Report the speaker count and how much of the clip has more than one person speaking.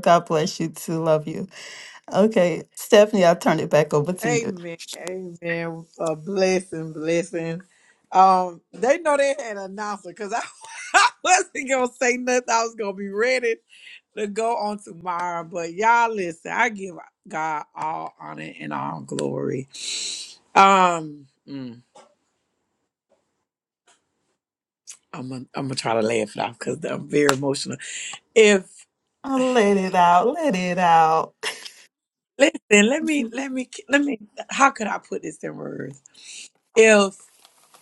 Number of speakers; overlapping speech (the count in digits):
2, about 1%